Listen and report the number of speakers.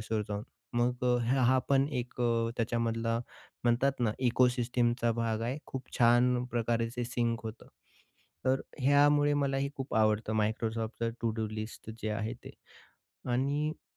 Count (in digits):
1